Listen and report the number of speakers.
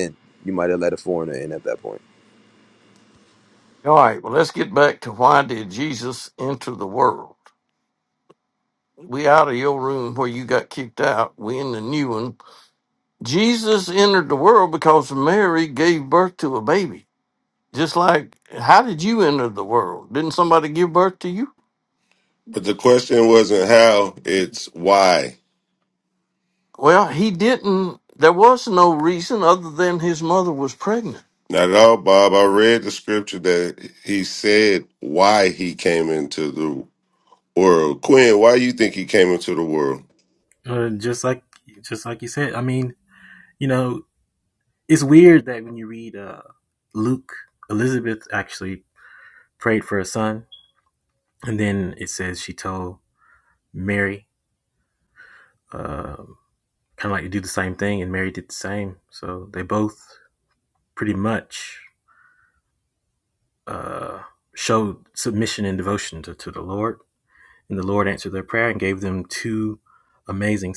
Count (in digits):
4